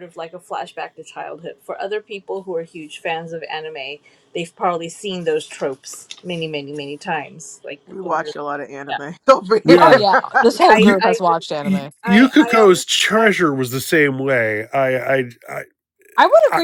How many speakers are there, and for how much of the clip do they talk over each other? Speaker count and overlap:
four, about 24%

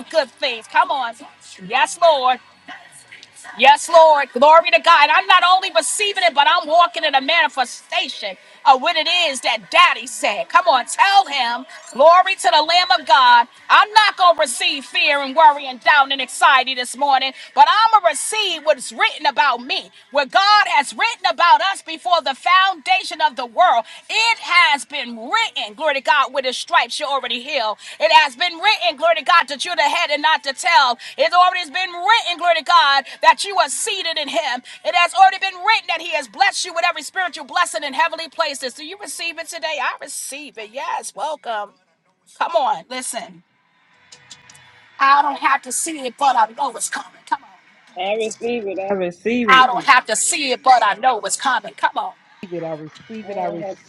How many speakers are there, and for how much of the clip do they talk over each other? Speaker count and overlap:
three, about 2%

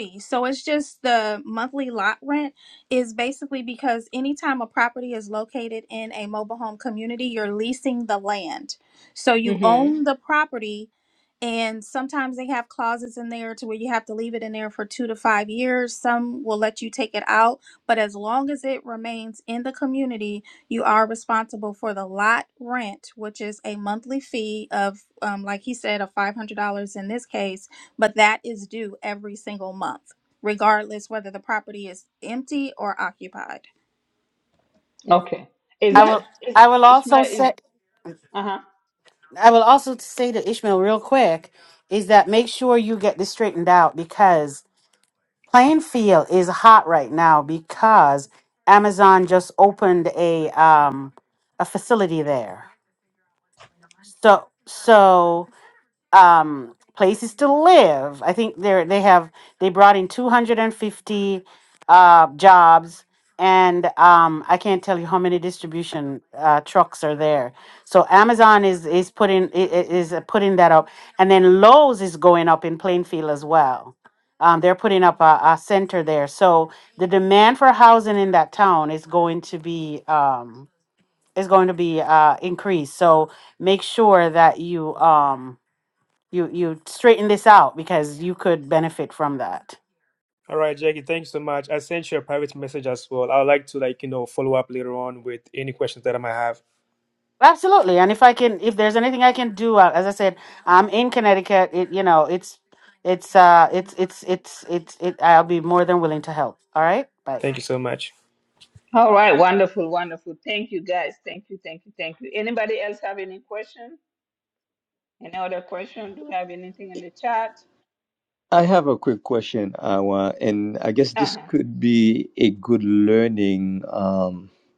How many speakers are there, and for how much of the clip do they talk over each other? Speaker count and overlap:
five, about 2%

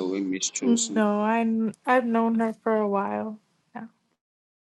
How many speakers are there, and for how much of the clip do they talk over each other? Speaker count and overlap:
two, about 9%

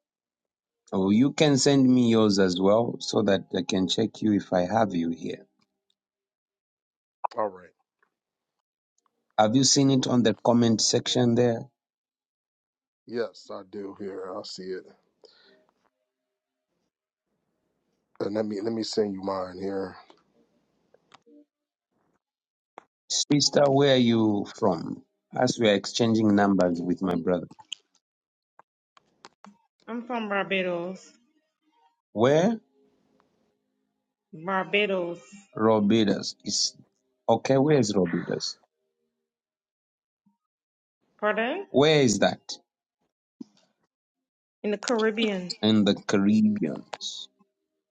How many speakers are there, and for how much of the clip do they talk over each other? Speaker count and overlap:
three, under 1%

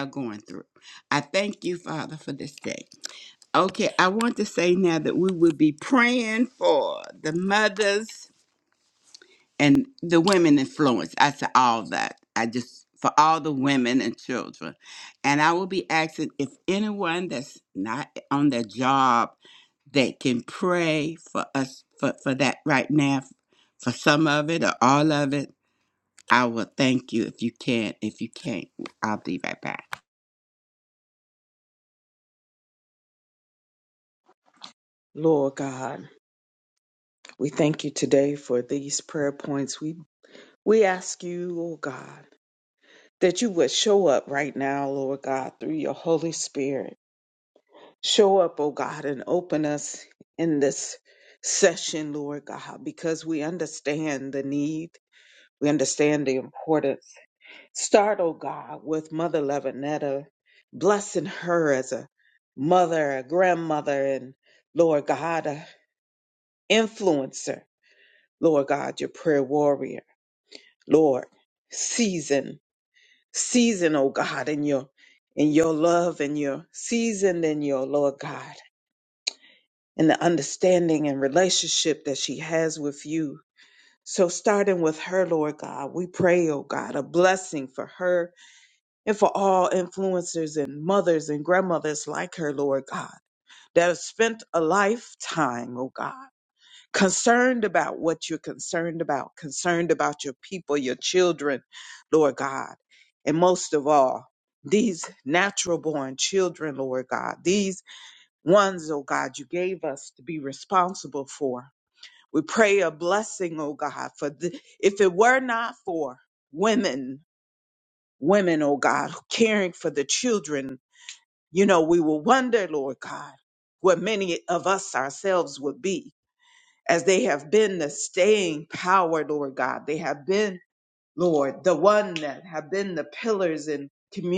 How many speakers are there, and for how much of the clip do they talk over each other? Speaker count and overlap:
two, no overlap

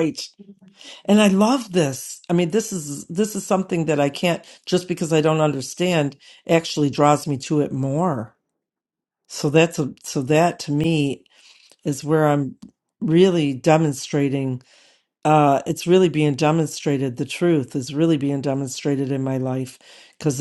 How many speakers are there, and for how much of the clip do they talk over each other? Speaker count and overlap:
one, no overlap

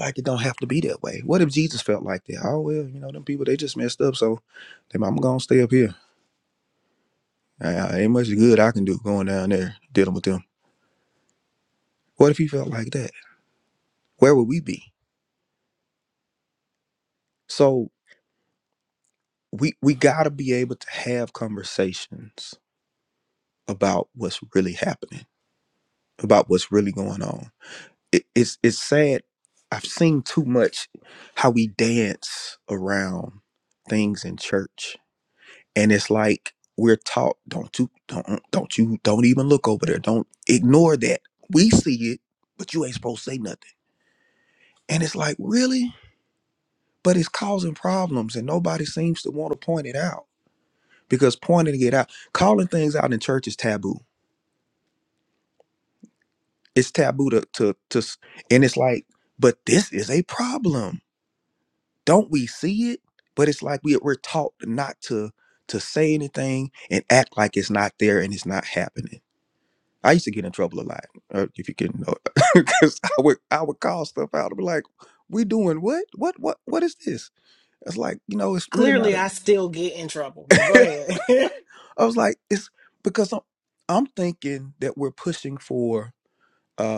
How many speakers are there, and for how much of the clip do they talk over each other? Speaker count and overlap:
two, no overlap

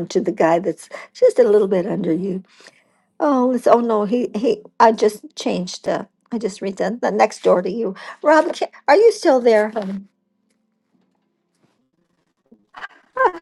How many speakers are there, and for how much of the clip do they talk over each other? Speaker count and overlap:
one, no overlap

